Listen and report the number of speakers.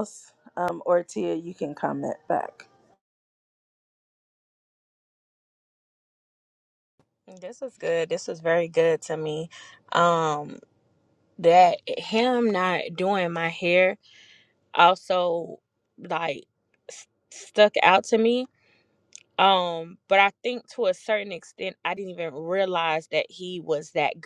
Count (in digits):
2